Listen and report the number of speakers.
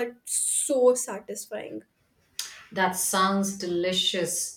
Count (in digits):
2